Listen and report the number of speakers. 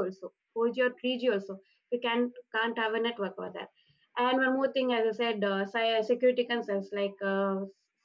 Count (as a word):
one